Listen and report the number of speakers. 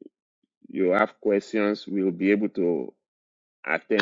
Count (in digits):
1